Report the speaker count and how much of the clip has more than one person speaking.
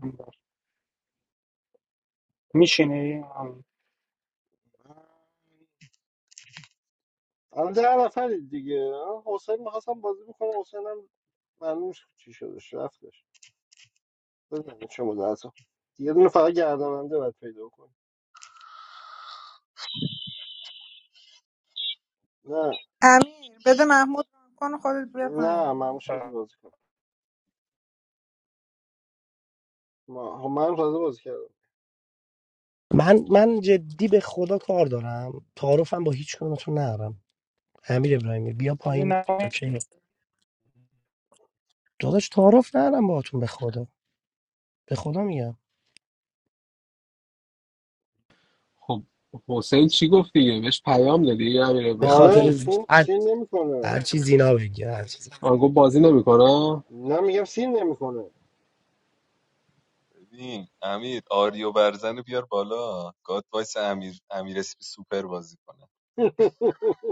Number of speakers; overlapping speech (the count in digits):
6, about 3%